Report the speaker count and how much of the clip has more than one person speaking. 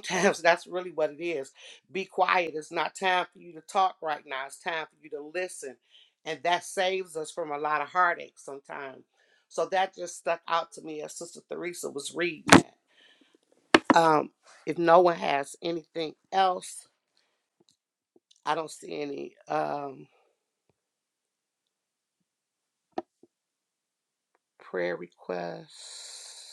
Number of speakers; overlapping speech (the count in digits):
1, no overlap